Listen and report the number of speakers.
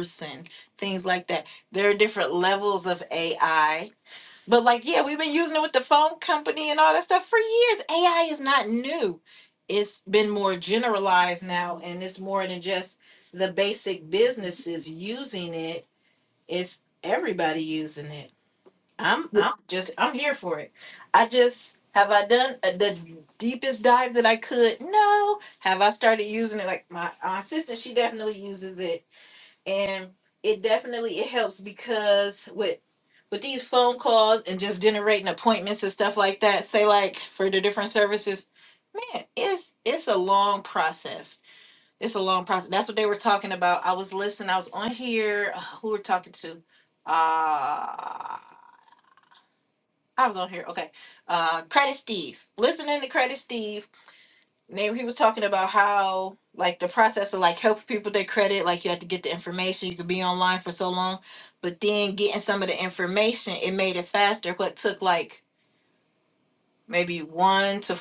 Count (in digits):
1